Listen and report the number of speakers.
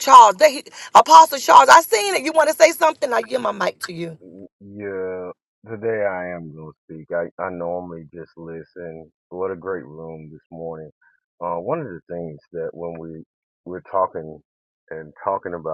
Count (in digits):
2